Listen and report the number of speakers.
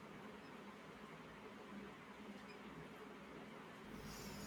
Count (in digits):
0